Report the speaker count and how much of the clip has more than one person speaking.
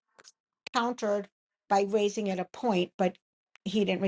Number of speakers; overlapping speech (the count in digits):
1, no overlap